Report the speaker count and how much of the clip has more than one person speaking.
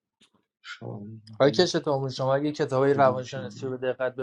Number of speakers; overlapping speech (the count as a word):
two, about 22%